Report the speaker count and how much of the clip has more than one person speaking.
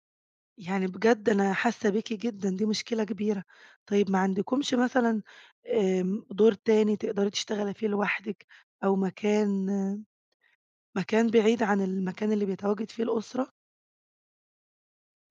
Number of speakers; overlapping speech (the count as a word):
one, no overlap